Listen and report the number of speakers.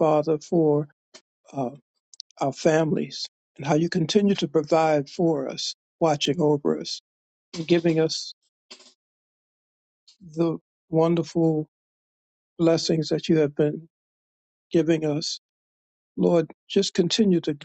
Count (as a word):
one